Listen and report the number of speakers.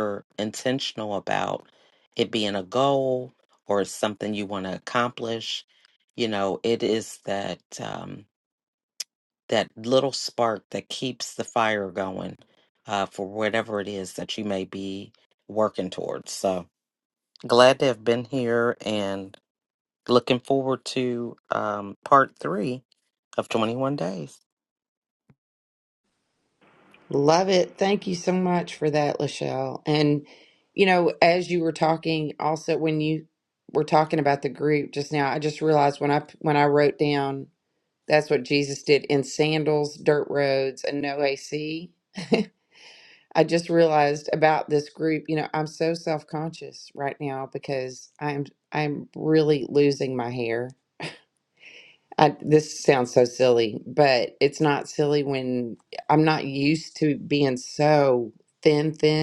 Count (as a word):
two